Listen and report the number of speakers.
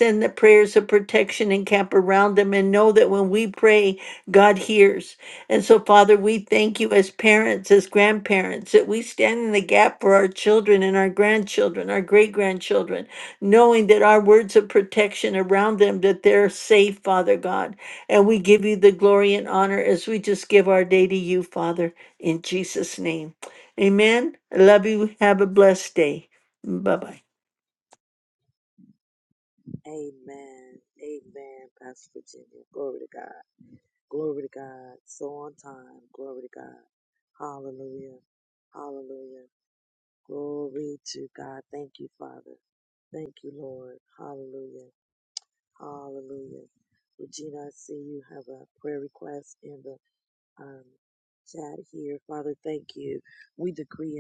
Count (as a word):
two